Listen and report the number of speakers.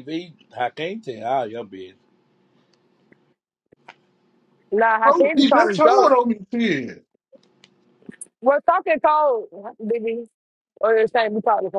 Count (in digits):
3